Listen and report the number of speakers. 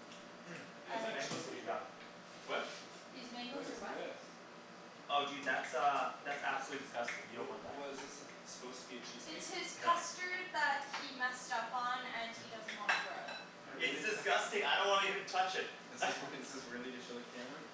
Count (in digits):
3